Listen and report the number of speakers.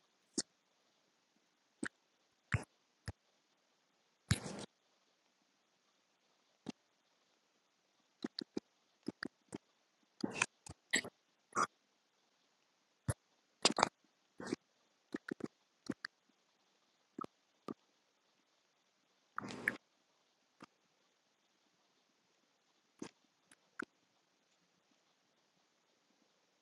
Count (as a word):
zero